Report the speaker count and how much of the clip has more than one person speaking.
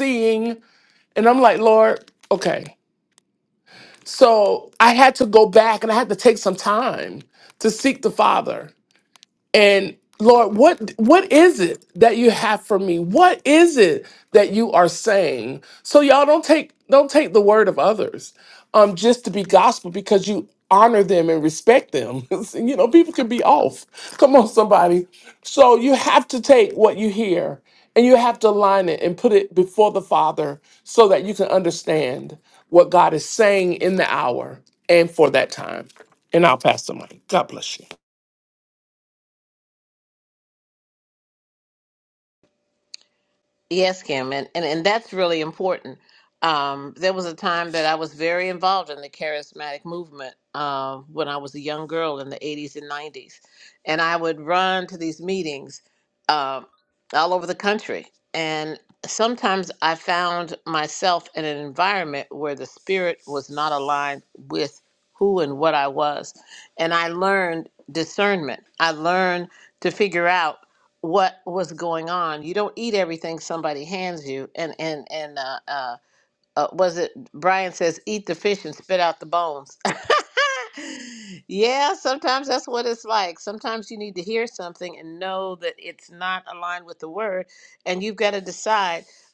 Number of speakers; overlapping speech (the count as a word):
two, no overlap